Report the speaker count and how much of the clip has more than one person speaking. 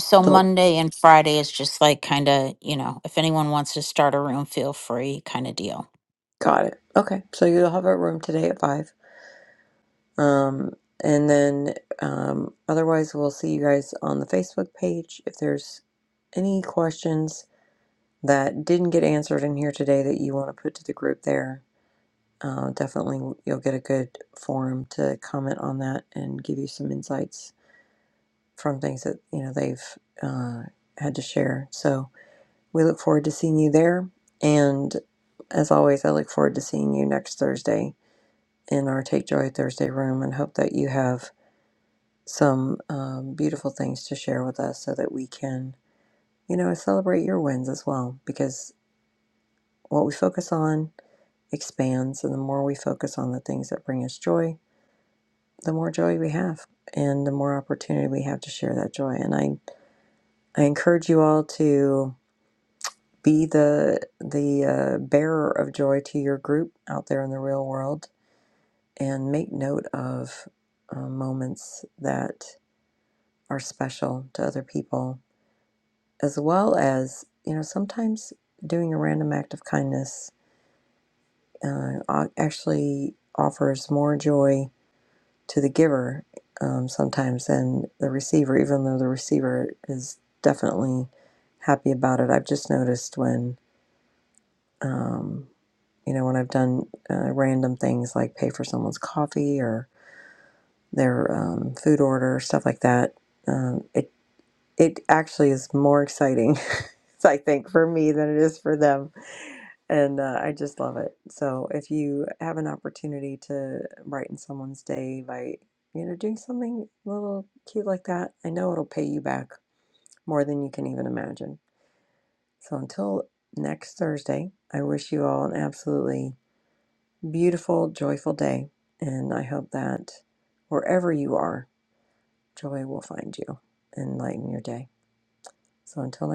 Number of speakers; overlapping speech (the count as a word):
two, under 1%